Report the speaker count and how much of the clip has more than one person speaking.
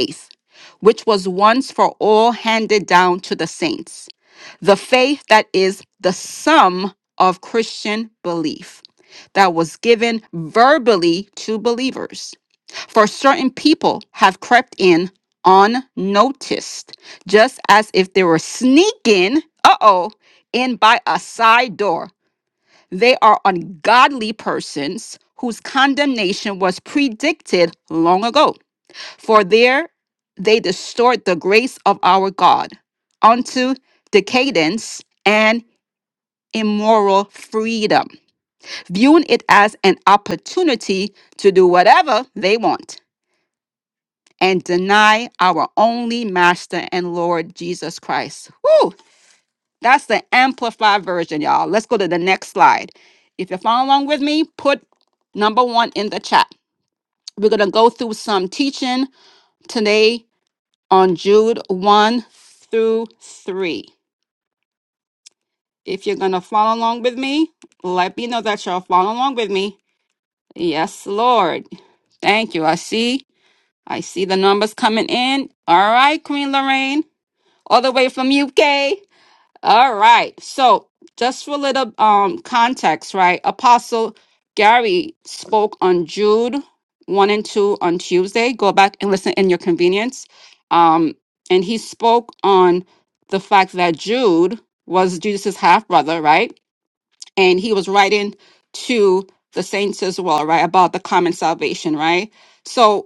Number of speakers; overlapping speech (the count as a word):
one, no overlap